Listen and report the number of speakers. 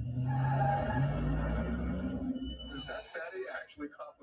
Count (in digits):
0